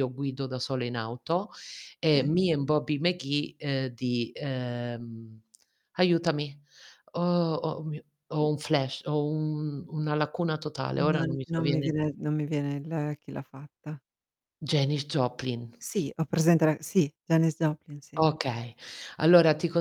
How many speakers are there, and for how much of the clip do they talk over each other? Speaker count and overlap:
2, about 6%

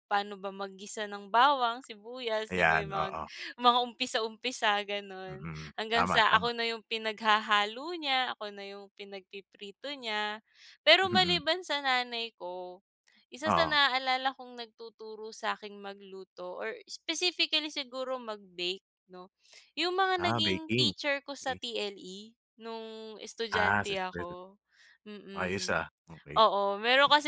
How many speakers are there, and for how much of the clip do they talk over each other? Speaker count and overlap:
2, about 14%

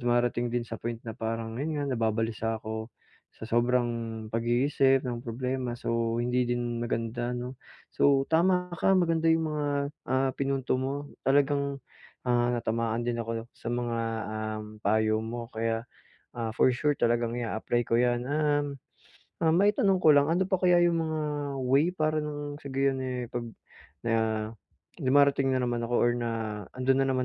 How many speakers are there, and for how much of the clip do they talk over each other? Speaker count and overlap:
1, no overlap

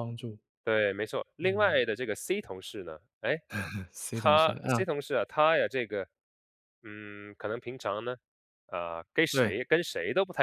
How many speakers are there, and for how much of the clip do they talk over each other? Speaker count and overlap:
2, about 10%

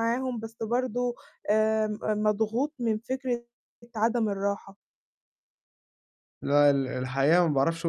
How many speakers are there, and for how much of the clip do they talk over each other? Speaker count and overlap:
2, no overlap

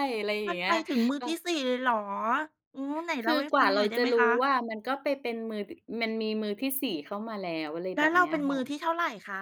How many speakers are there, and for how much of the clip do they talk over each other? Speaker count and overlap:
2, about 25%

